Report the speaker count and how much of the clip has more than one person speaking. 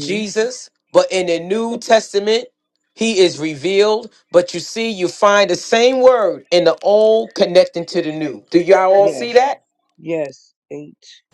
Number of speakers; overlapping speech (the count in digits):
2, about 5%